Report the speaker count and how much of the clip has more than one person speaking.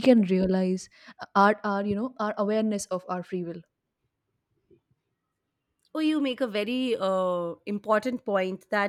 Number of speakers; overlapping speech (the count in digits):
2, no overlap